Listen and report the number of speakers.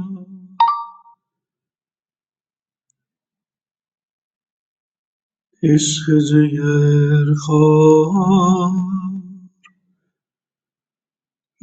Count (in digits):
1